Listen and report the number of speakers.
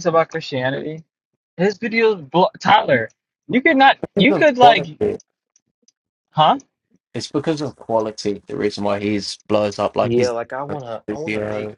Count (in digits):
3